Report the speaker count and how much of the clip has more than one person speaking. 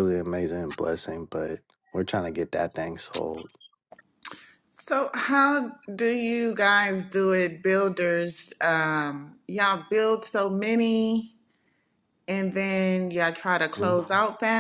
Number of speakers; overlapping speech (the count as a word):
two, about 1%